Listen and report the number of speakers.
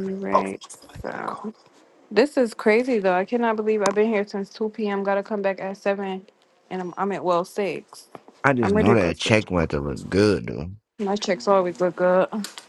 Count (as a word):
two